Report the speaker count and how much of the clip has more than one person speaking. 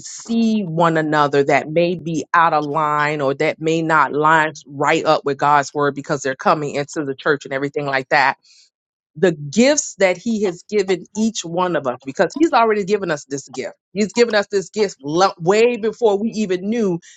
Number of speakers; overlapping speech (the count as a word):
one, no overlap